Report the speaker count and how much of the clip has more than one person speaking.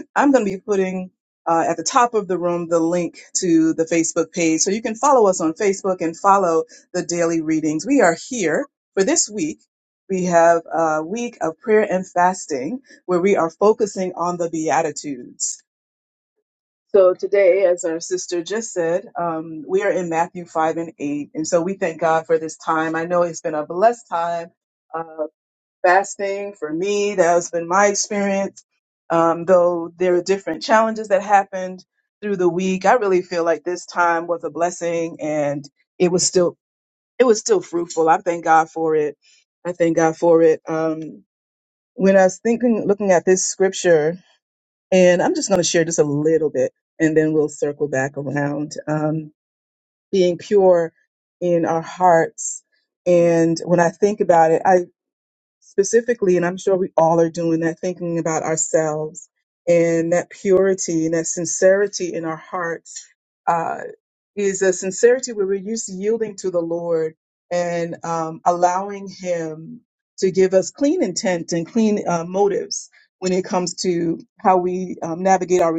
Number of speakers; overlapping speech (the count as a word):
one, no overlap